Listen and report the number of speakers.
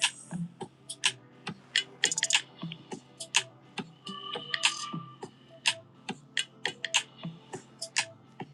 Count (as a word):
zero